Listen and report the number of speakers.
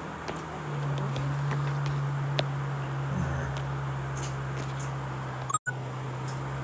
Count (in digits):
0